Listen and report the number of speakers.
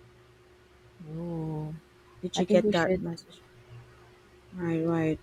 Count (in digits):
2